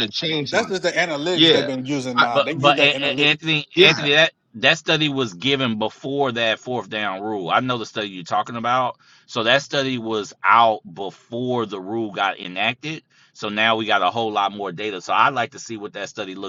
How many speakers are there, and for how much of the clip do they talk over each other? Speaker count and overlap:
three, about 13%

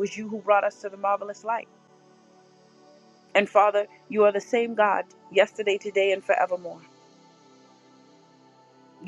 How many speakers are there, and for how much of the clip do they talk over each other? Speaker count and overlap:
one, no overlap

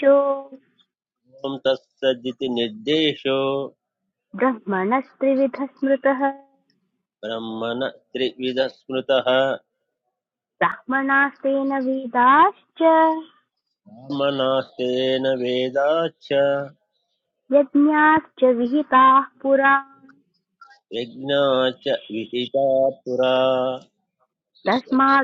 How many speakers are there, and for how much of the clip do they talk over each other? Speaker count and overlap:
two, about 2%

